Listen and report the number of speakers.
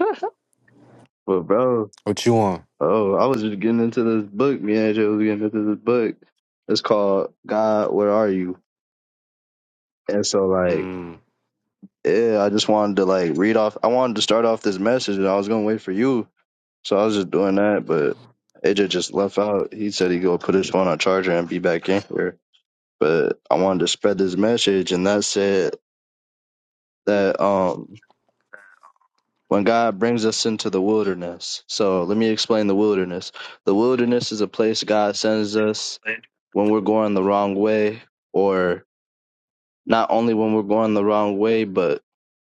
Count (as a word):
two